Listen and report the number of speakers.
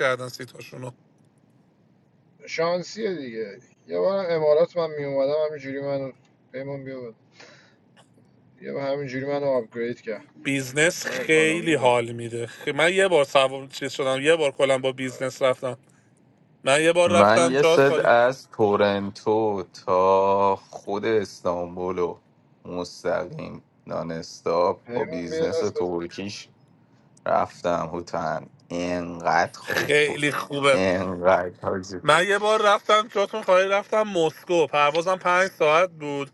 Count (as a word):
three